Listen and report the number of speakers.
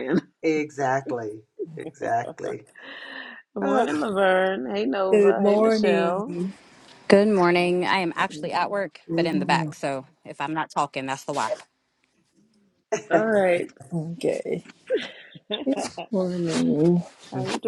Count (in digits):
4